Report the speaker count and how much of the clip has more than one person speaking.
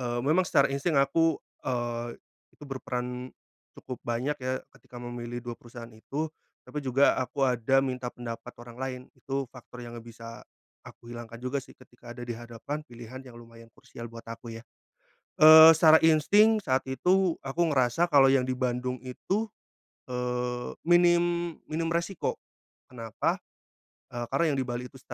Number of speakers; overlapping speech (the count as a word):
one, no overlap